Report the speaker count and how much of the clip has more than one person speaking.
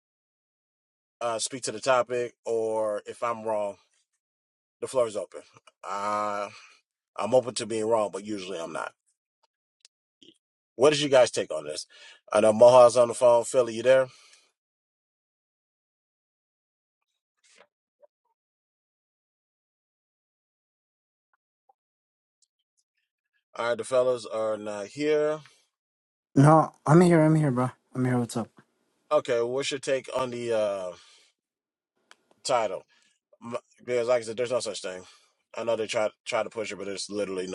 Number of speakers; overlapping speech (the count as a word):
two, no overlap